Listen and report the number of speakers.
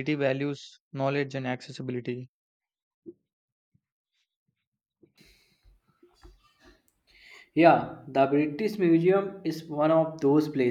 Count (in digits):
2